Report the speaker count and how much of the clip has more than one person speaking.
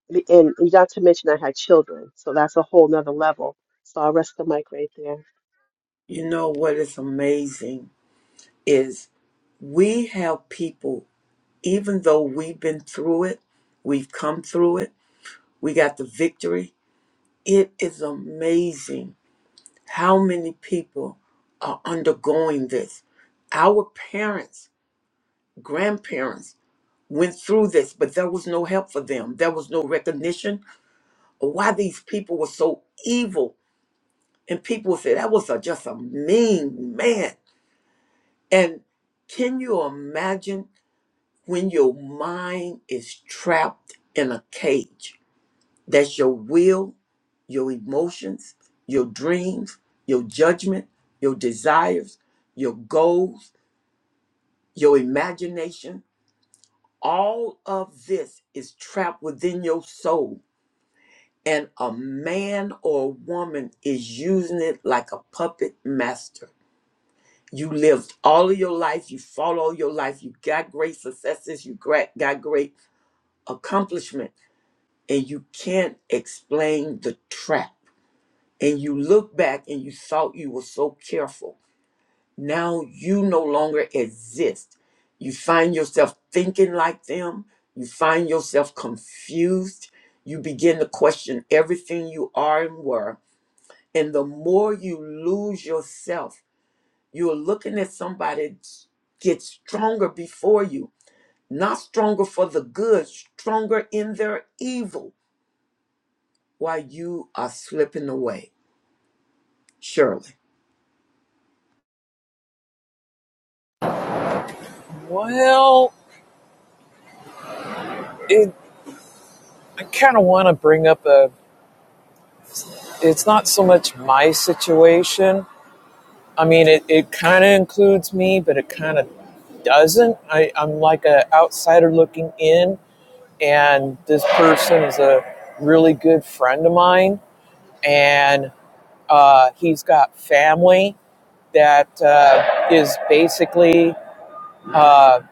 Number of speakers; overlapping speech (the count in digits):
3, no overlap